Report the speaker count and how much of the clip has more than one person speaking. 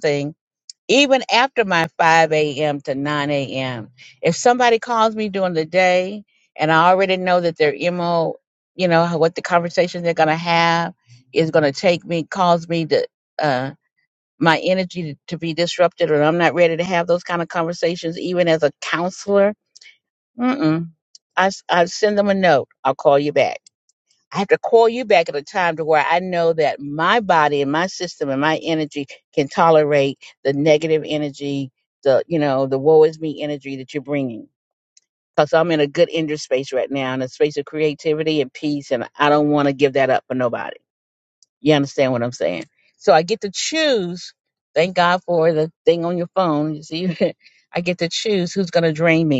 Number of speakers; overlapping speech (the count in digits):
1, no overlap